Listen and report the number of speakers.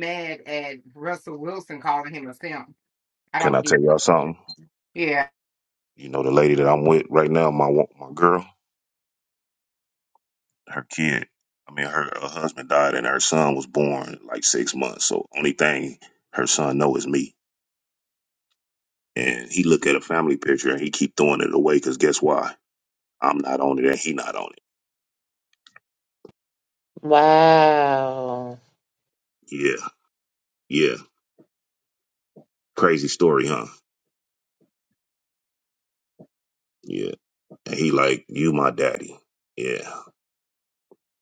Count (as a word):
three